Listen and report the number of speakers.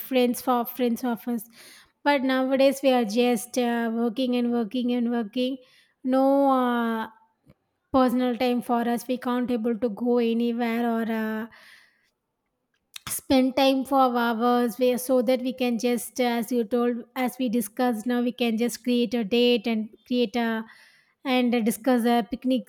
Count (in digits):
1